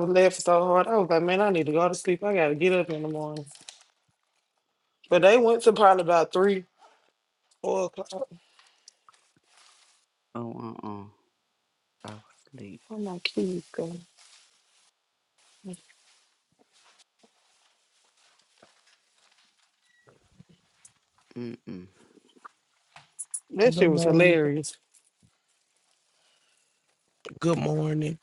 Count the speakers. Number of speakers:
three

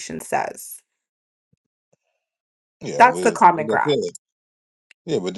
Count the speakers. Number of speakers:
two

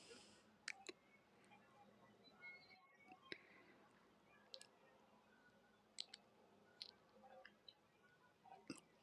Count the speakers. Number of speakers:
zero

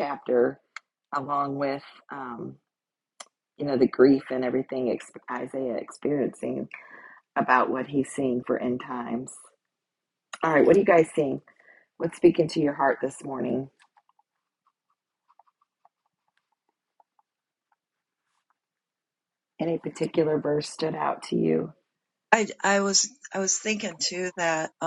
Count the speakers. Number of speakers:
two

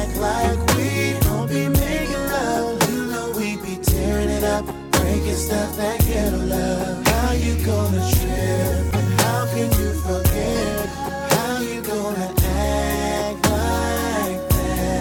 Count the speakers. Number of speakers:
zero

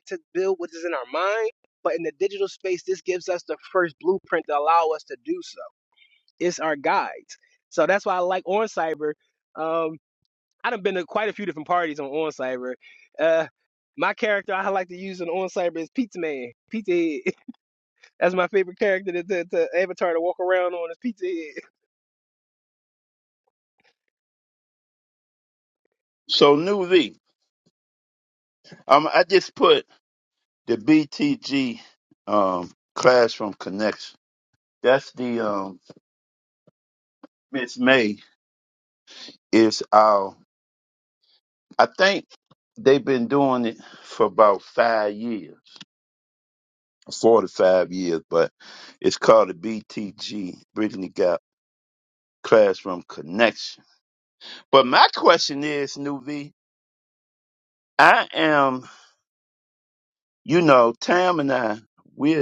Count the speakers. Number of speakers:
two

